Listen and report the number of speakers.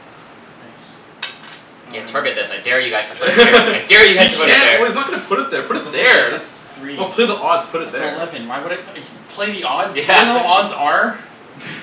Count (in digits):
3